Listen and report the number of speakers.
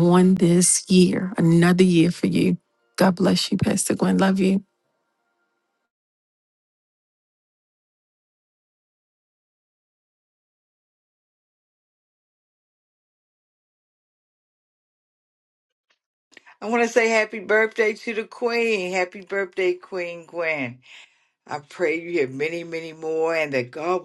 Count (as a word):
two